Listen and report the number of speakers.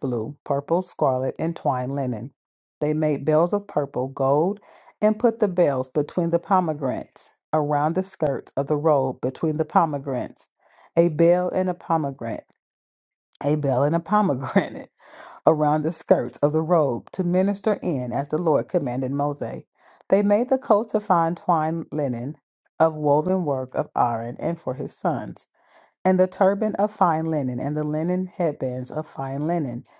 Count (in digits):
1